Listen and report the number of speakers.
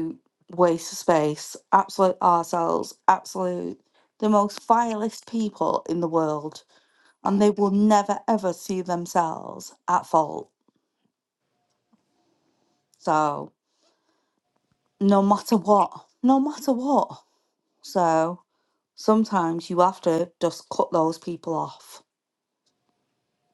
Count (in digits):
1